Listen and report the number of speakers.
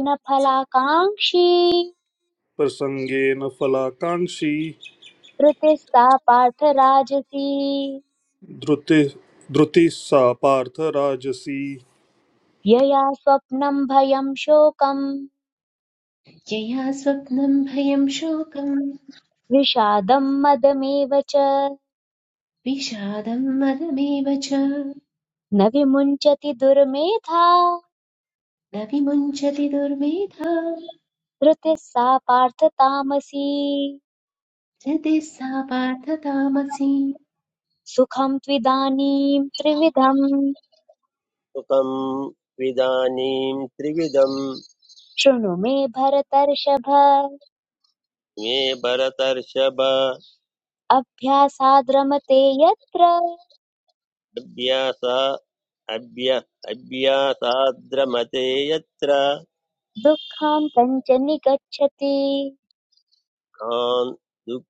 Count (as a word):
four